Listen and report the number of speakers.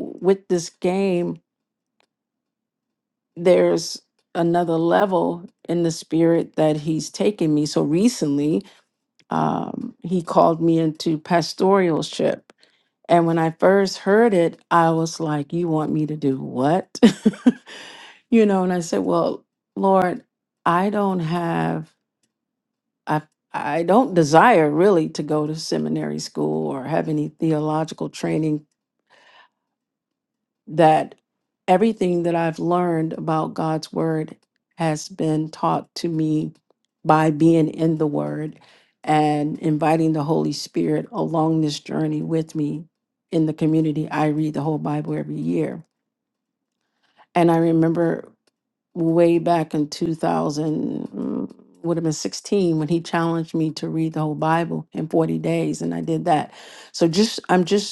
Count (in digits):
1